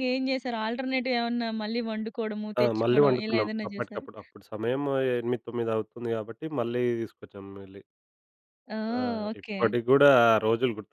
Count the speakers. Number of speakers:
2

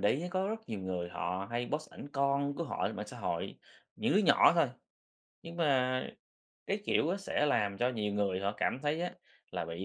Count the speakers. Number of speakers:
1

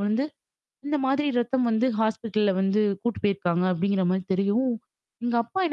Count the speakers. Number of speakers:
1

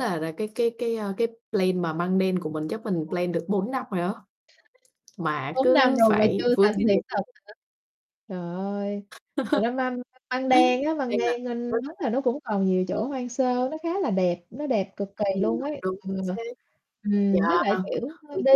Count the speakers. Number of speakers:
2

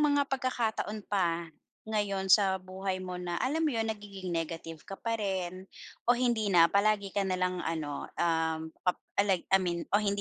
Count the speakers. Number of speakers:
1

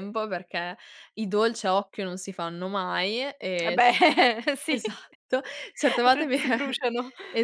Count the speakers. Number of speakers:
2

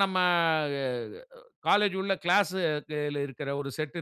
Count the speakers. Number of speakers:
1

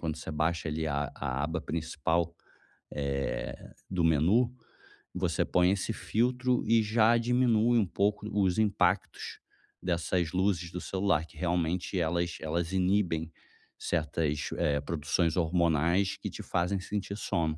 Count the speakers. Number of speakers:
1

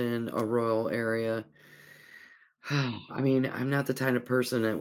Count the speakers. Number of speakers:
1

